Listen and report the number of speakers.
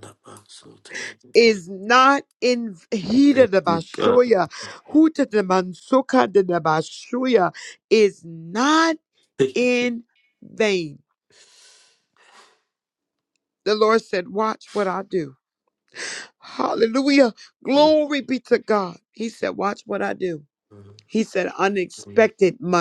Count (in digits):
2